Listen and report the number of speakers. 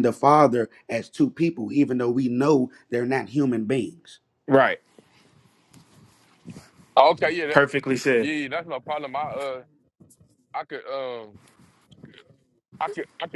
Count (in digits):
3